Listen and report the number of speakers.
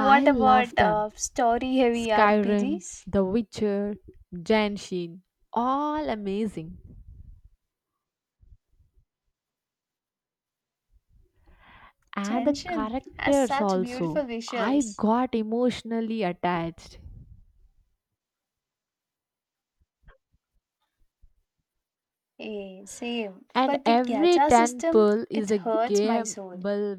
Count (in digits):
2